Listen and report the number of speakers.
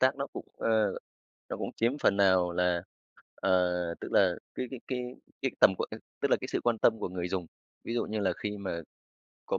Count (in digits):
1